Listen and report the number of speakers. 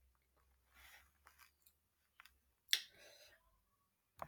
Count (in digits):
0